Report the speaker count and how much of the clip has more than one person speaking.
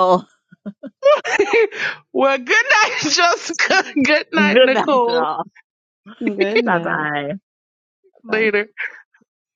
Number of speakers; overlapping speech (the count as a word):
three, about 16%